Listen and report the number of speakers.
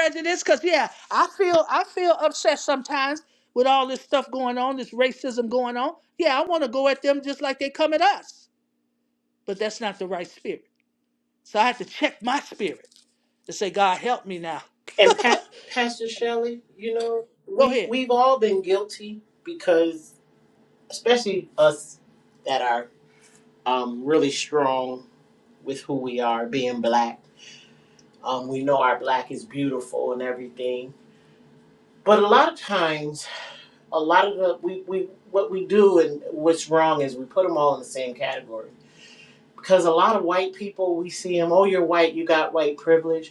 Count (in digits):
2